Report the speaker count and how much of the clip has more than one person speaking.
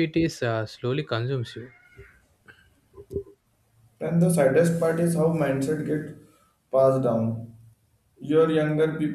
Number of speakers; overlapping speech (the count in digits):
2, no overlap